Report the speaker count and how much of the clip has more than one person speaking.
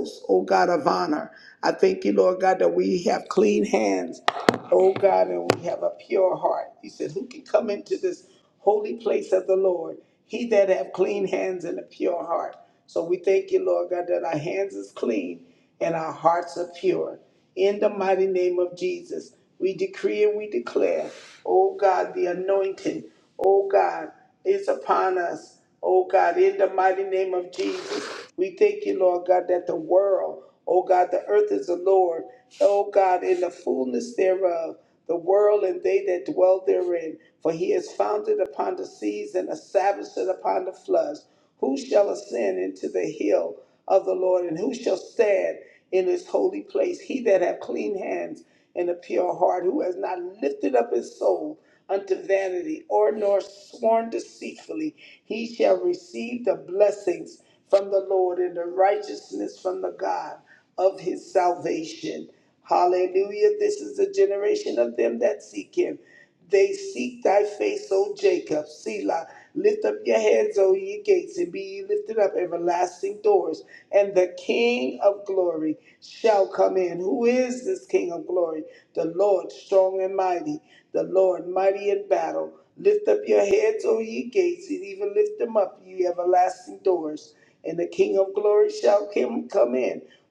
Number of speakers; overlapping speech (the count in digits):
1, no overlap